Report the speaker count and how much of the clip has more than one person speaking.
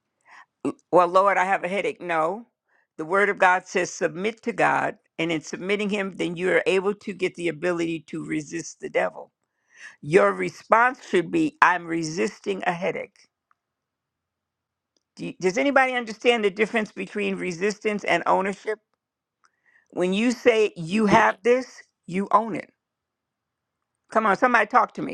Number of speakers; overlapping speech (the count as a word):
one, no overlap